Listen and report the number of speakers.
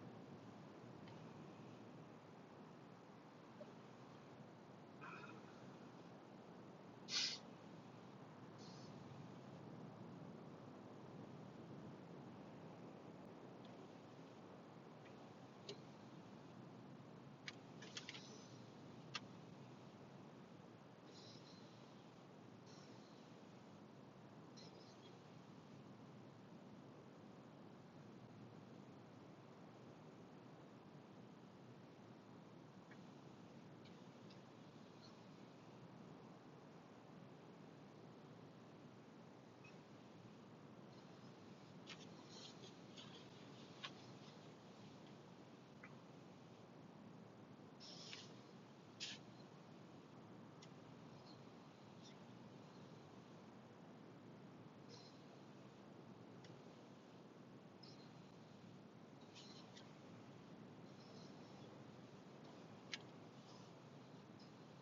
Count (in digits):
0